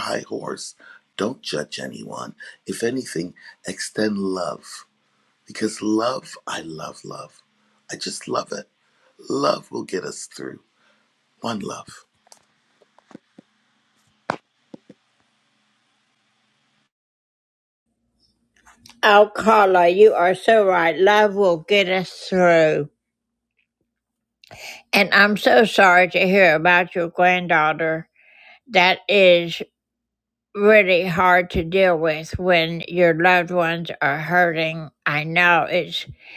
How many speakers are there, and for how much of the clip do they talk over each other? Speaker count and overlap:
2, no overlap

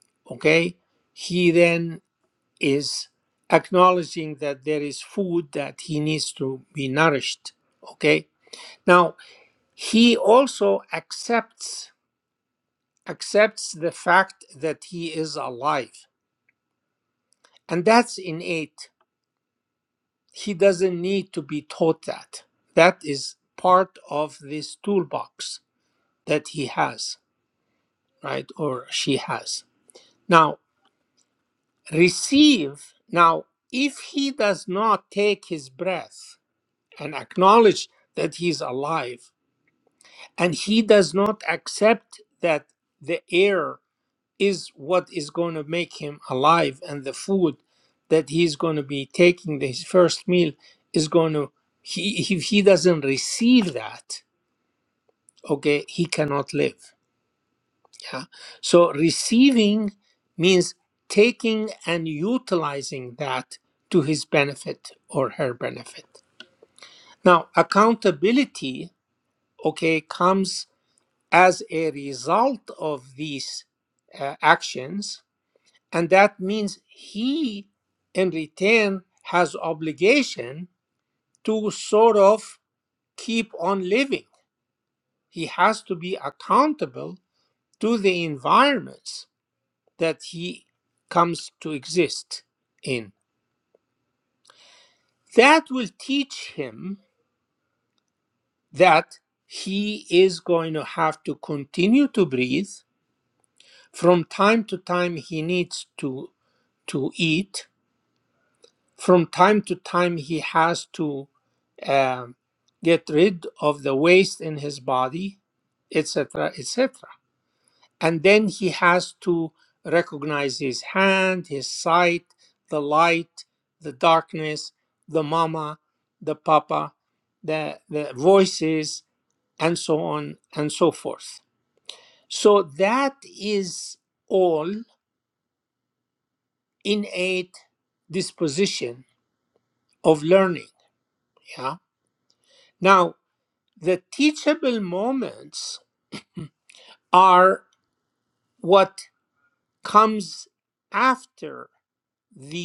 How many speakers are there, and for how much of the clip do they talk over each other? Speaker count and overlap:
1, no overlap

